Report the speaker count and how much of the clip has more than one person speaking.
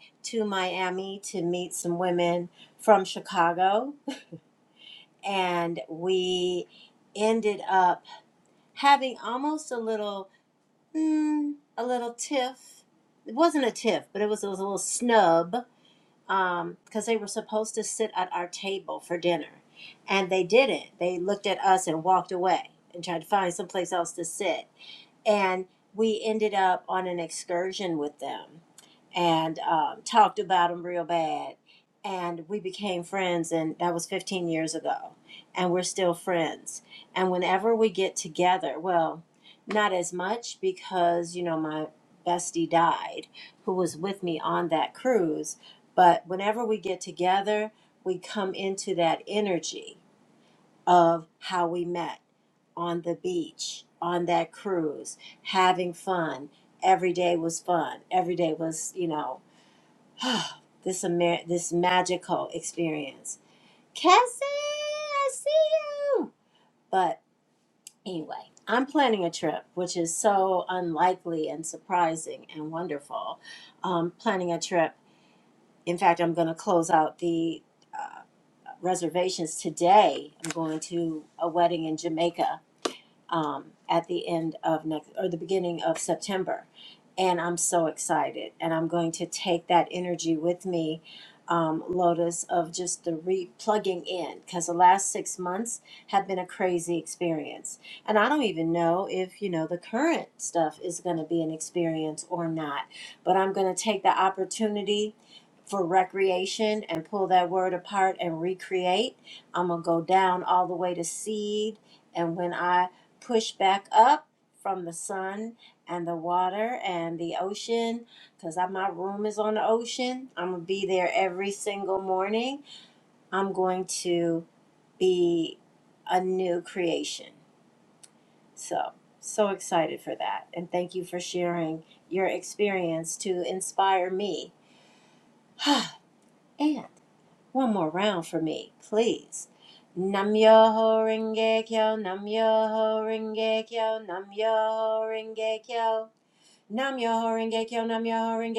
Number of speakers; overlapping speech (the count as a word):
one, no overlap